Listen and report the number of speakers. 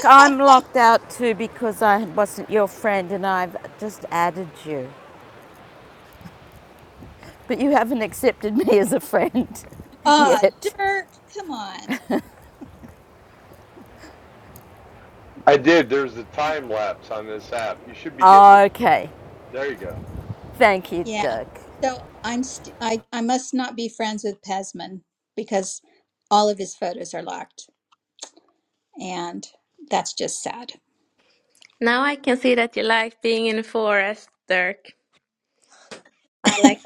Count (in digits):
4